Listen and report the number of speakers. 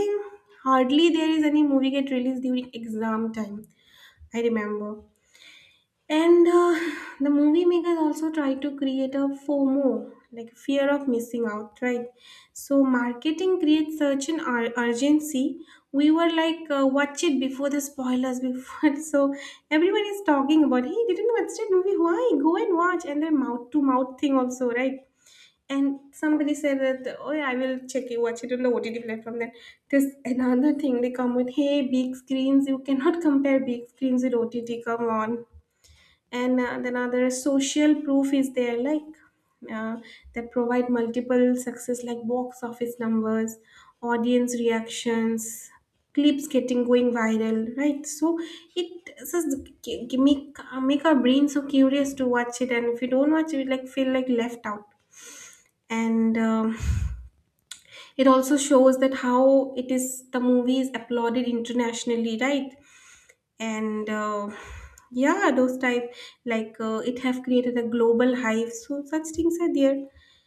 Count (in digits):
1